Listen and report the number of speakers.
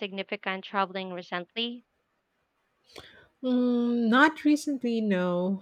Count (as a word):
two